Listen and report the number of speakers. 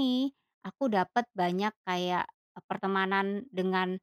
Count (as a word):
one